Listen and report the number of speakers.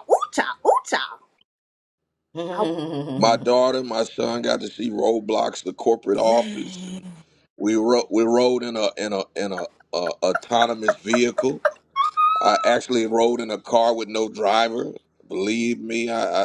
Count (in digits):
3